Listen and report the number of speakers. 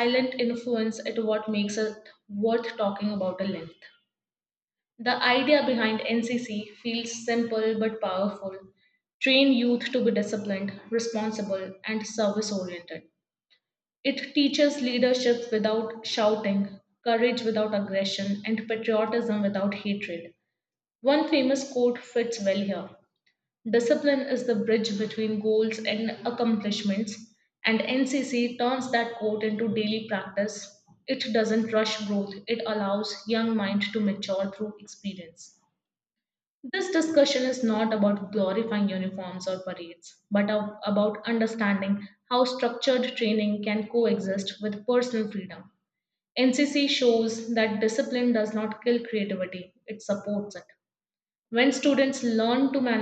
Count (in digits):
1